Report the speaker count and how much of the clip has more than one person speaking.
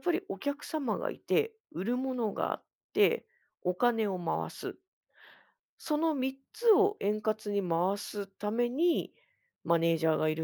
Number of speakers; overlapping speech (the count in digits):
1, no overlap